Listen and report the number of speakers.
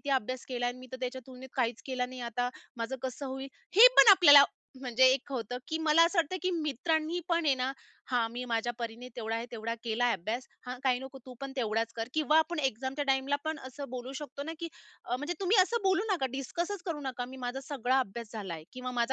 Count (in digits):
1